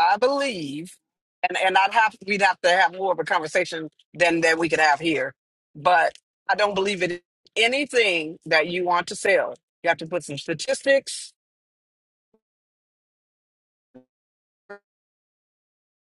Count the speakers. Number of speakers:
1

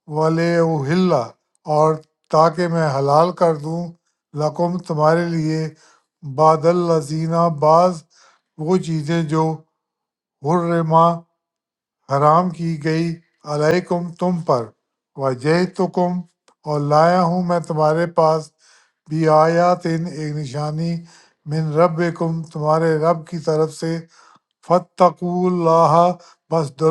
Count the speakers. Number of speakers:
1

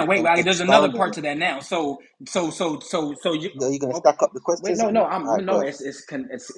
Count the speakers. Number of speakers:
2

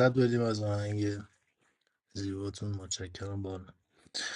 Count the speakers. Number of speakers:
1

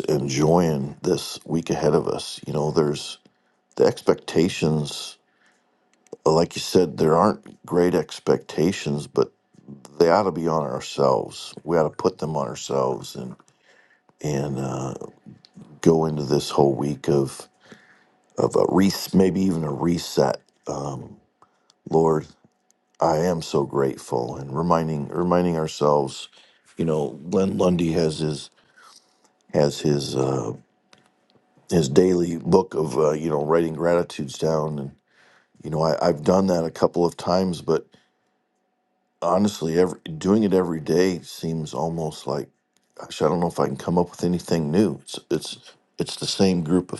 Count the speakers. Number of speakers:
1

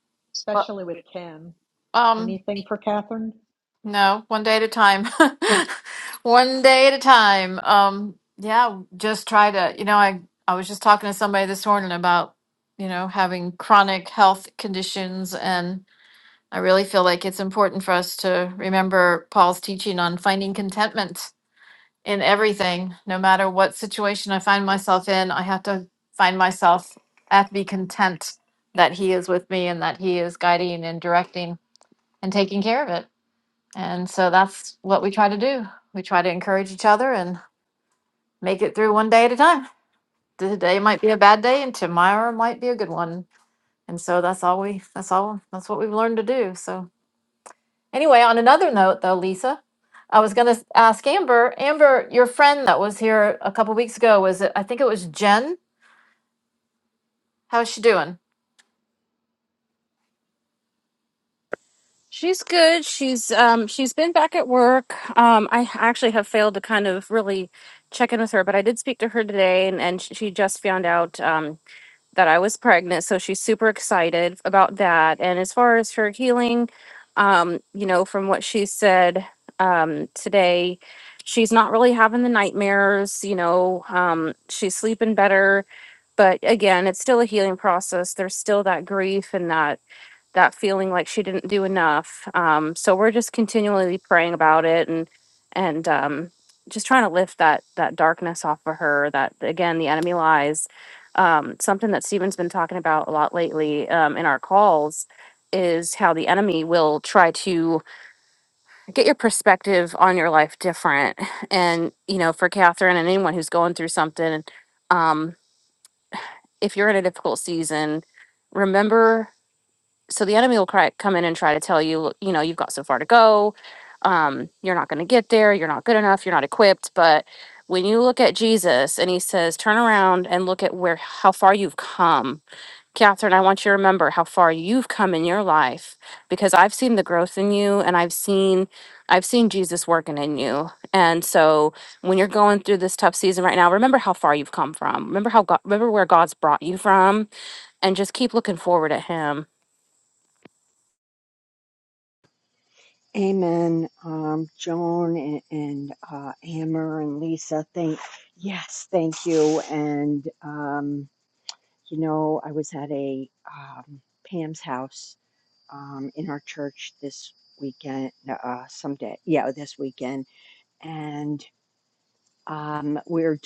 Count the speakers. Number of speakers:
4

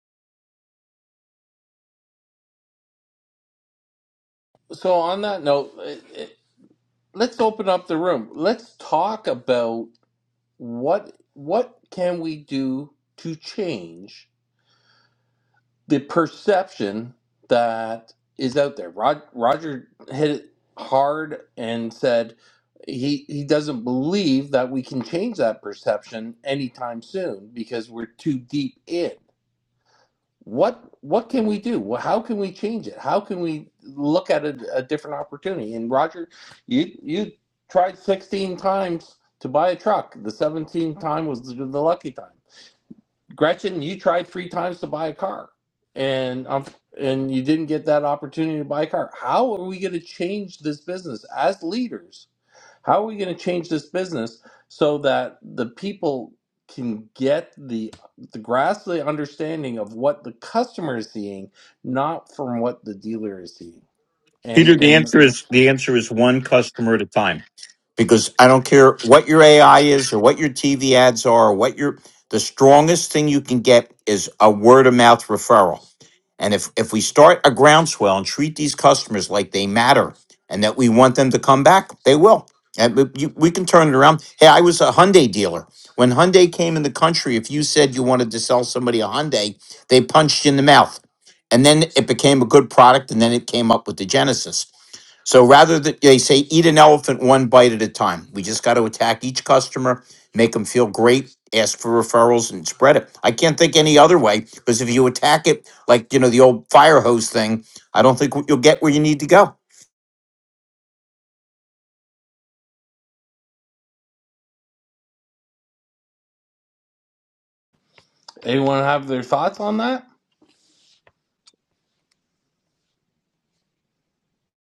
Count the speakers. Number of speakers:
2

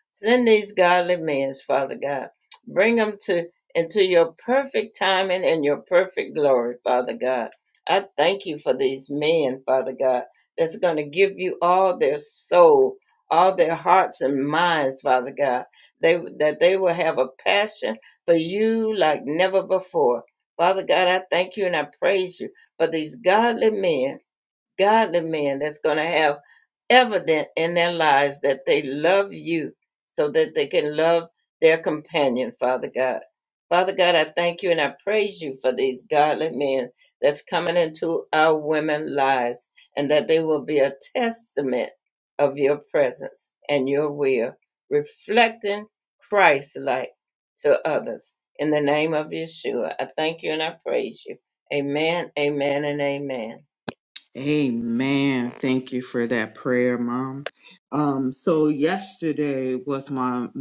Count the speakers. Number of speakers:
2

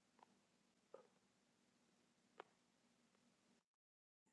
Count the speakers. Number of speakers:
0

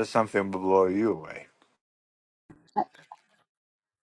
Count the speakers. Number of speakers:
1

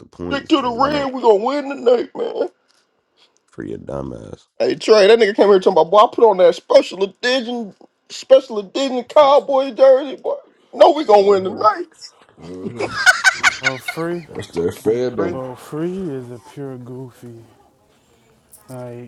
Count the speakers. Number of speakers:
4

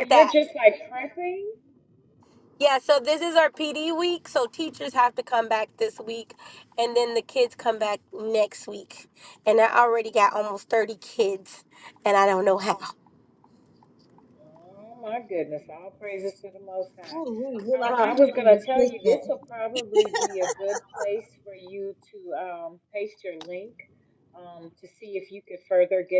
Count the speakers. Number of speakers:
3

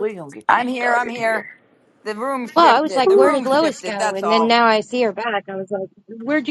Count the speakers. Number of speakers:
3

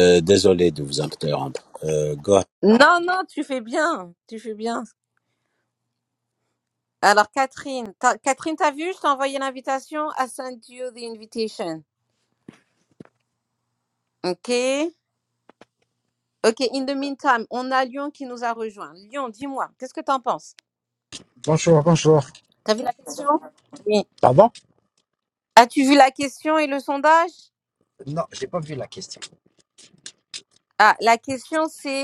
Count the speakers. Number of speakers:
3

